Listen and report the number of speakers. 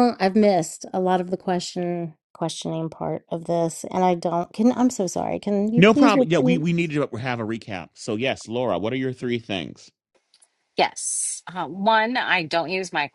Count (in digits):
3